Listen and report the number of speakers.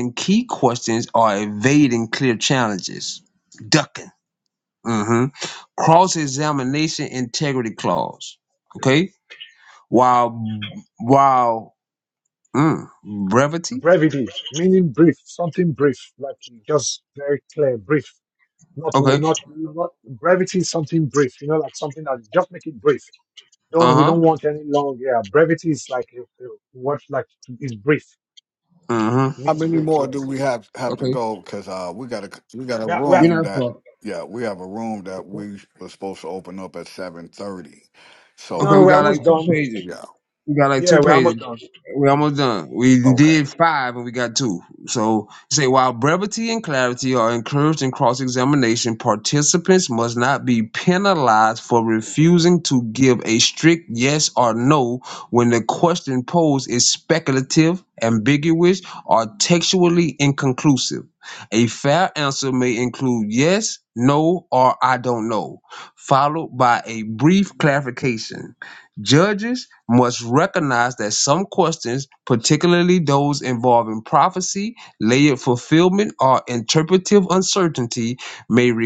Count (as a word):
three